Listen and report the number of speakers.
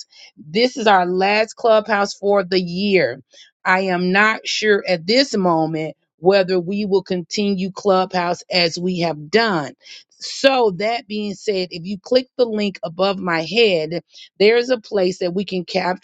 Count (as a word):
one